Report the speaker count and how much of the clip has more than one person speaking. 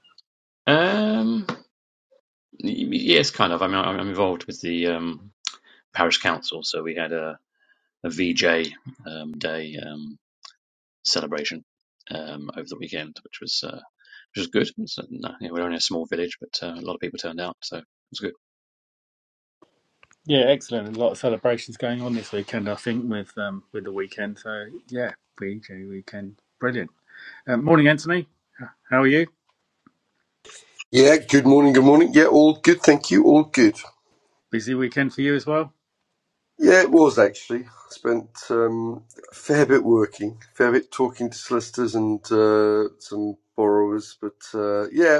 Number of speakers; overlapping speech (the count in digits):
3, no overlap